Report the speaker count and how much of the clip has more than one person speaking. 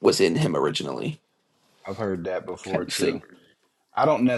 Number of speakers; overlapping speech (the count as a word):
two, about 12%